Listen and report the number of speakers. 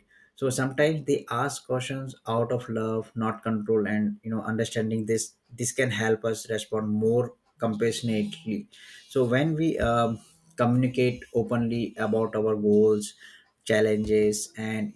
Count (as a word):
one